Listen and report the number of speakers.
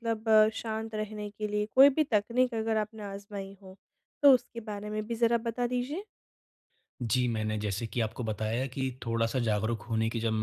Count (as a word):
two